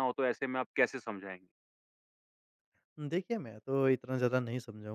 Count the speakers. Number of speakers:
two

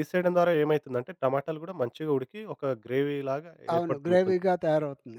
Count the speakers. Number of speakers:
two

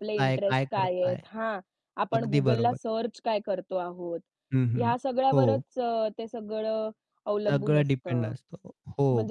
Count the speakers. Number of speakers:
two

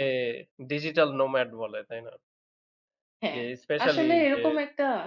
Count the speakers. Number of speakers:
two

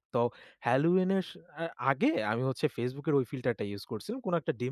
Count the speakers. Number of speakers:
one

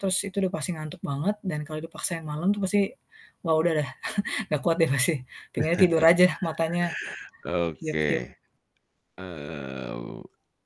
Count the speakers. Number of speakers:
two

